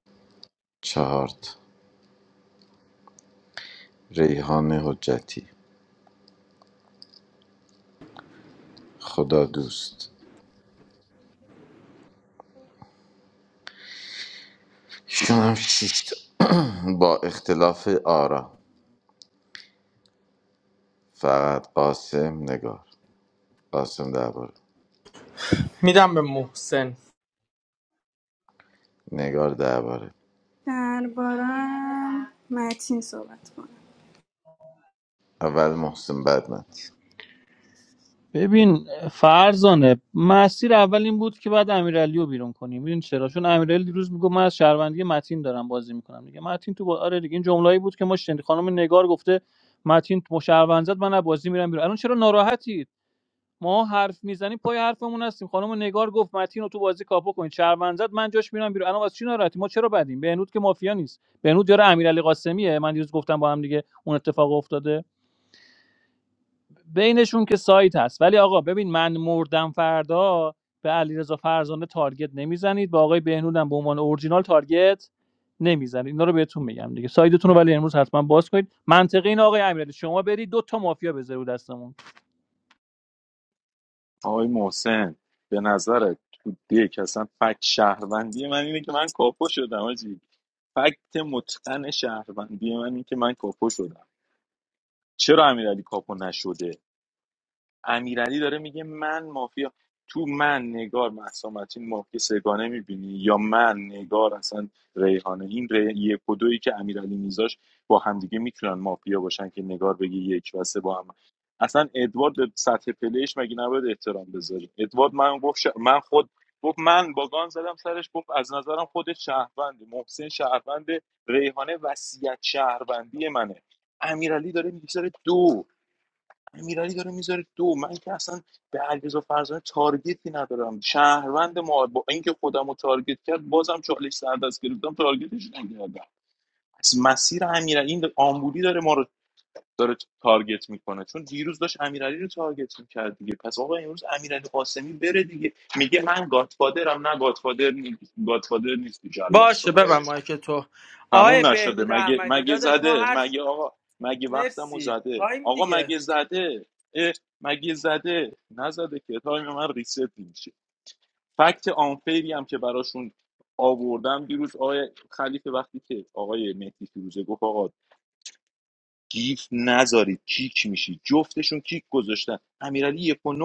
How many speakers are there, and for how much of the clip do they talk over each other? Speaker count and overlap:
five, about 3%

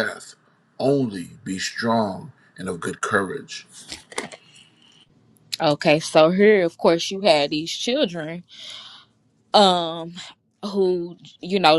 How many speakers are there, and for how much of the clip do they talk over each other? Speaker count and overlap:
two, no overlap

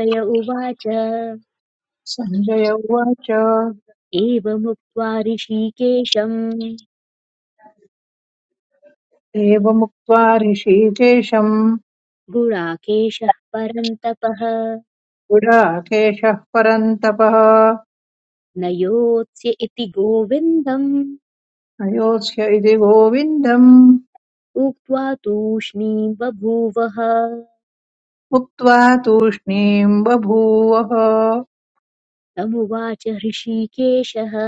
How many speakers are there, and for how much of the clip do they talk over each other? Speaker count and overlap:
two, no overlap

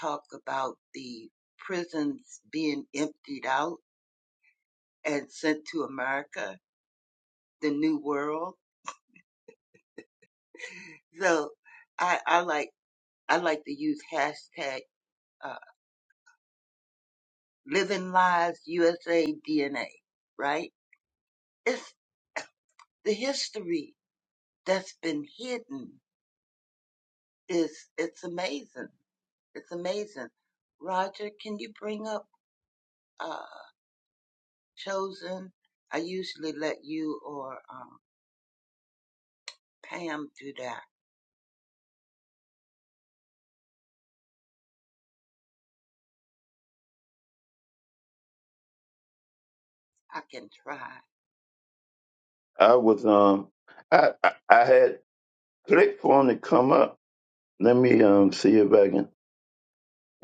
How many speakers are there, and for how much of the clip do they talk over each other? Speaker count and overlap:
two, no overlap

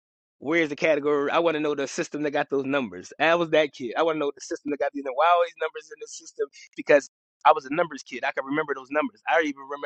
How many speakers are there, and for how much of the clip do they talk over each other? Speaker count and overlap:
one, no overlap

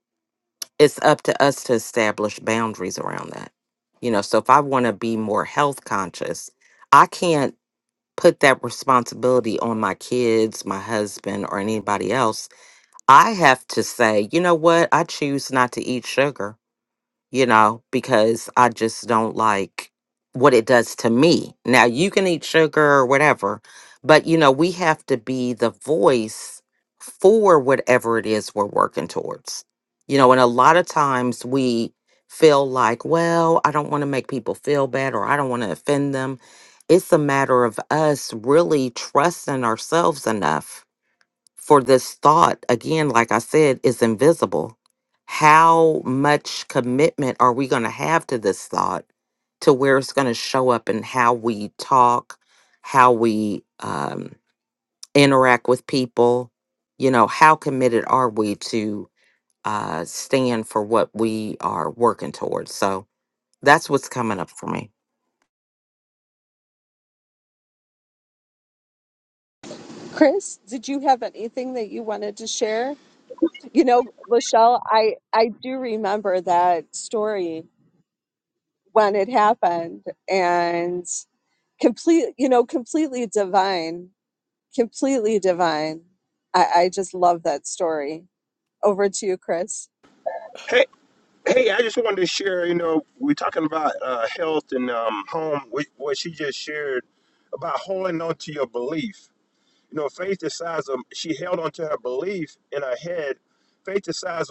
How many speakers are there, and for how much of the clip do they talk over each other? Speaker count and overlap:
three, no overlap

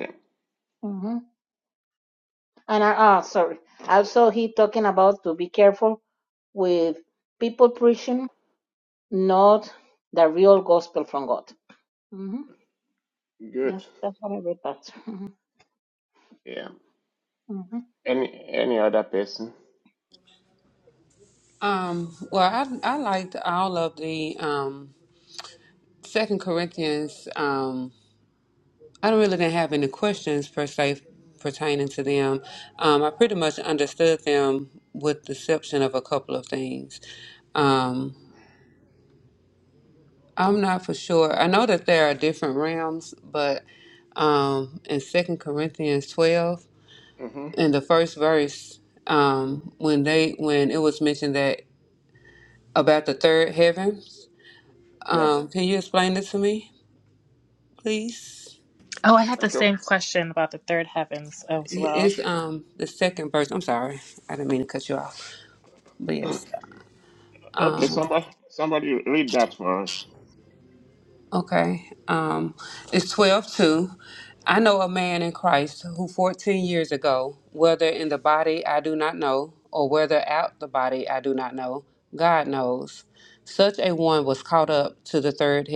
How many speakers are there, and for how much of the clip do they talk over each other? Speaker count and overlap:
four, about 1%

